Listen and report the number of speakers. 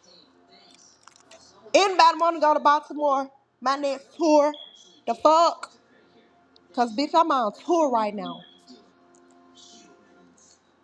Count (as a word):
one